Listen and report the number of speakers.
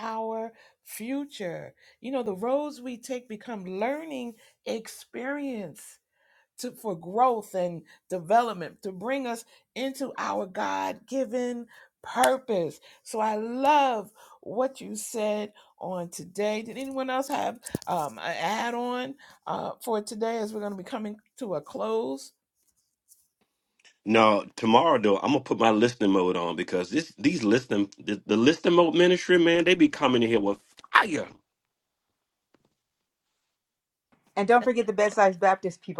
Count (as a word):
three